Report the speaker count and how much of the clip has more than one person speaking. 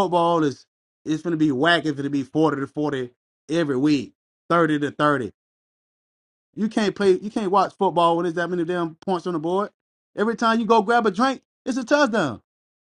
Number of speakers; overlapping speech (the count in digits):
1, no overlap